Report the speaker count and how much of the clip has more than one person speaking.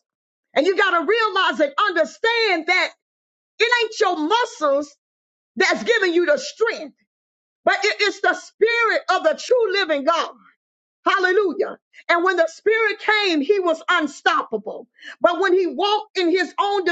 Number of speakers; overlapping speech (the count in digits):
1, no overlap